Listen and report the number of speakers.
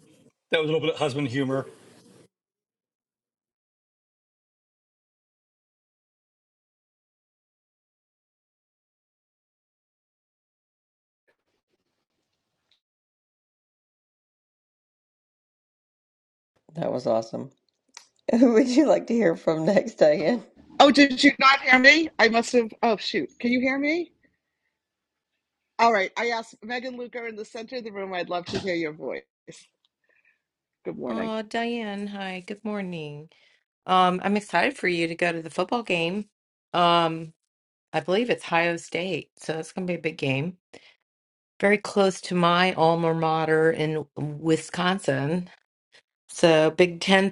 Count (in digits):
4